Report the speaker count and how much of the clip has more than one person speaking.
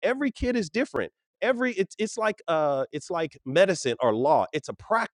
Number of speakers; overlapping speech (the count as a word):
one, no overlap